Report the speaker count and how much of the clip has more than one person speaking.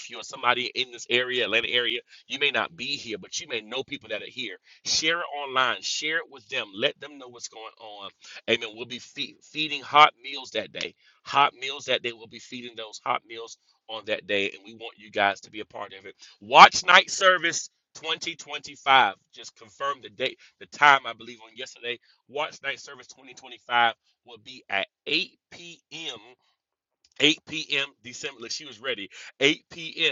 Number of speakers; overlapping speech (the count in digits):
1, no overlap